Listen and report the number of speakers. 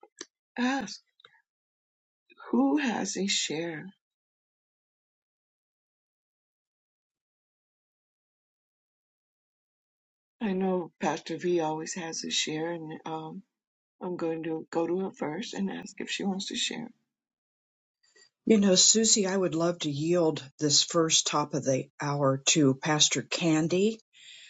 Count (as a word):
two